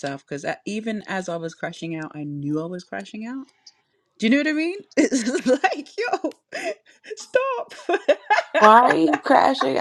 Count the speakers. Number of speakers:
2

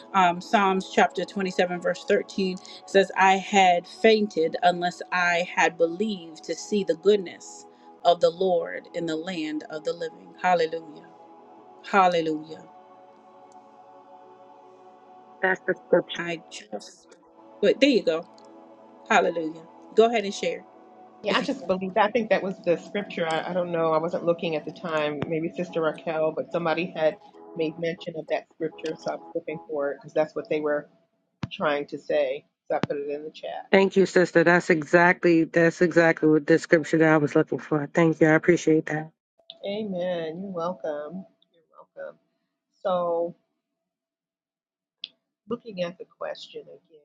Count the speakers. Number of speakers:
3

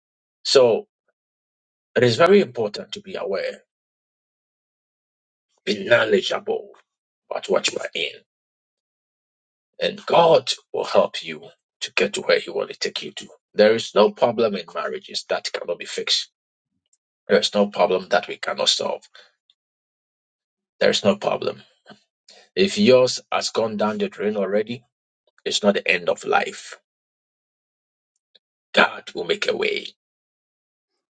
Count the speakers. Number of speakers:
1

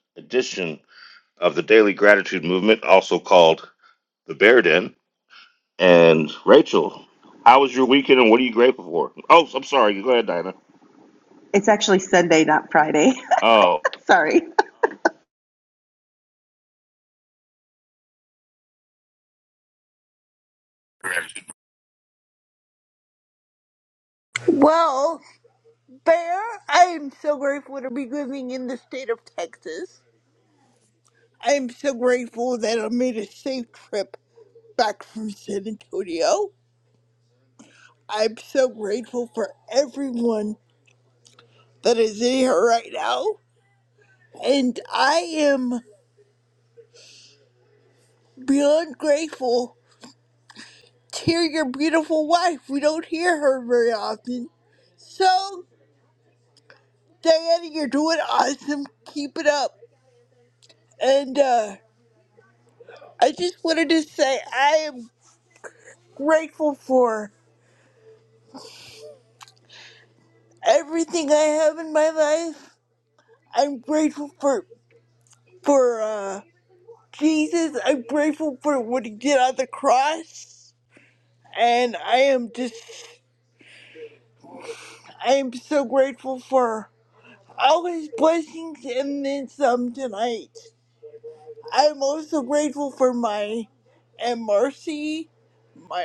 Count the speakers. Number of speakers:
3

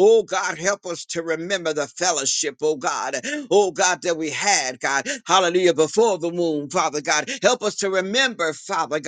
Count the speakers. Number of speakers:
1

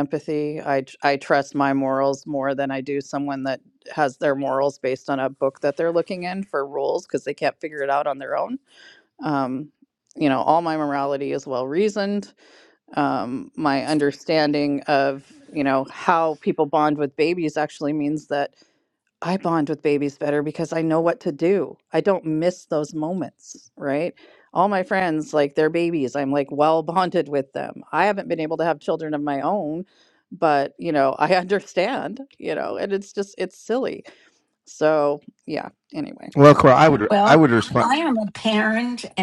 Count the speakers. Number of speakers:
3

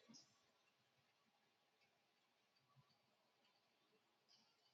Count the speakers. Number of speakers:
0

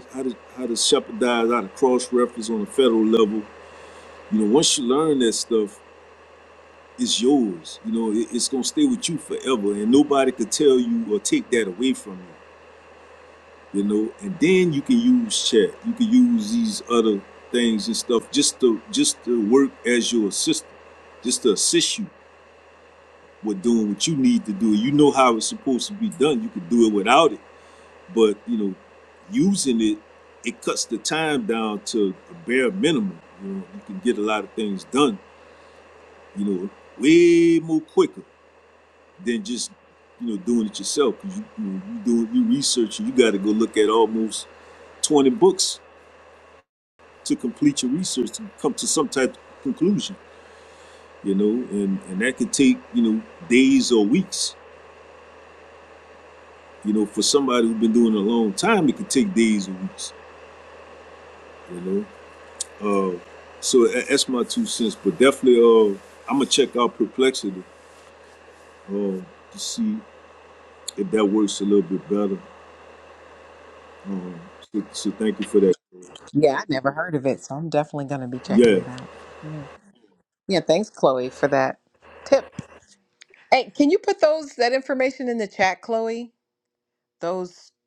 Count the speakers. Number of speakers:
2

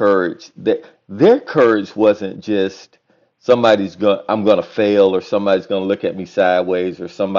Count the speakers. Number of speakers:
1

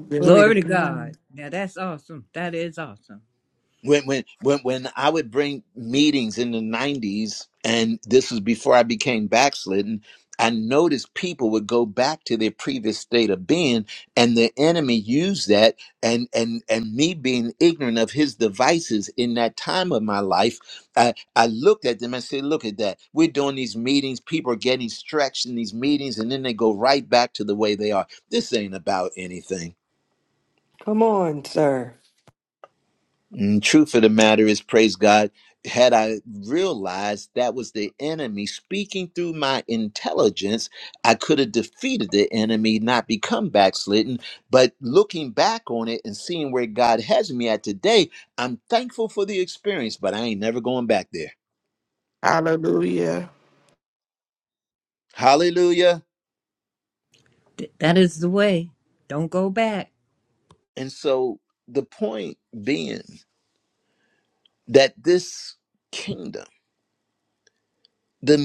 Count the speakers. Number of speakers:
4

